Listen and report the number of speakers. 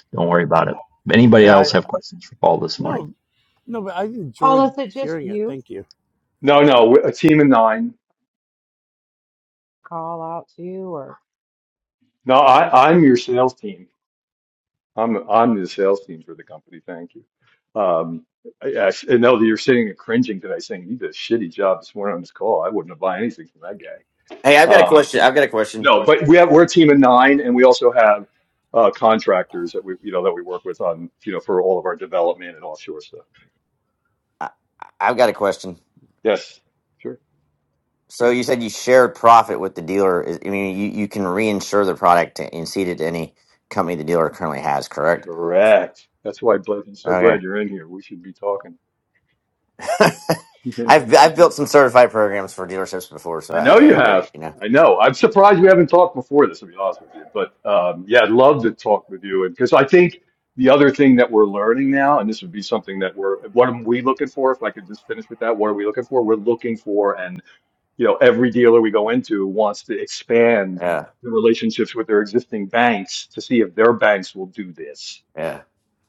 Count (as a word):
five